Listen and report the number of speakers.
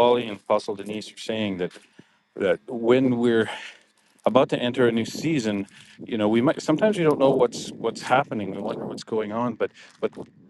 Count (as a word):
one